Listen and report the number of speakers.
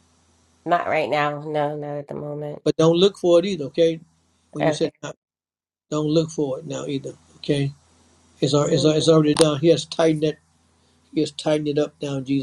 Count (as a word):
two